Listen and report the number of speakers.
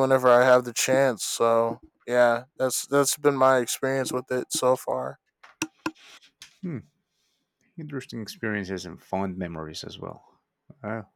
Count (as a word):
two